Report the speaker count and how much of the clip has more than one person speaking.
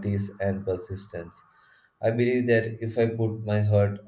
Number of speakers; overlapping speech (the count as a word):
one, no overlap